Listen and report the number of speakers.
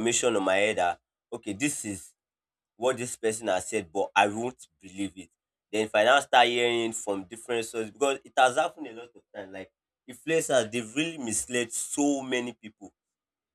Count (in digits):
1